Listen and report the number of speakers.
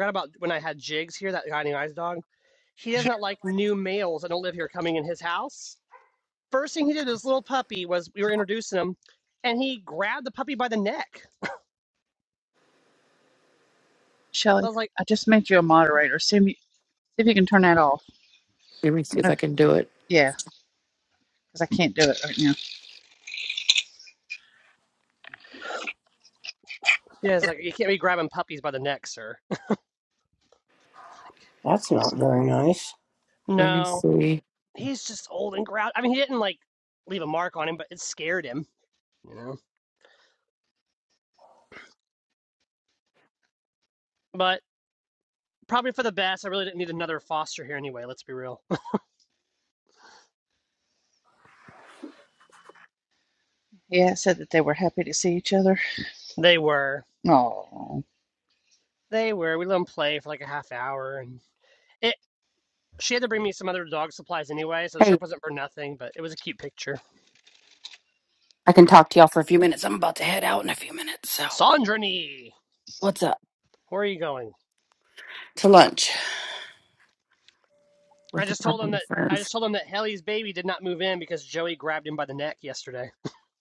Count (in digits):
5